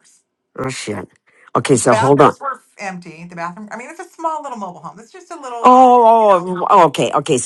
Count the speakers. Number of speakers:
two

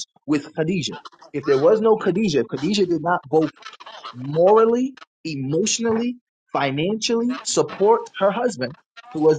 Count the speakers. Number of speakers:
one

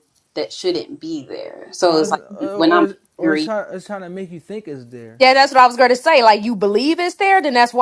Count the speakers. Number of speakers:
three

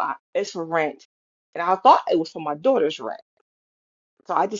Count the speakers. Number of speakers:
one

